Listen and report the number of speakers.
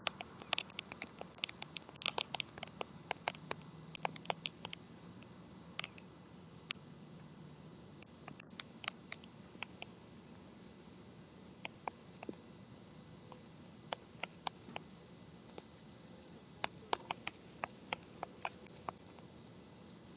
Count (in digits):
0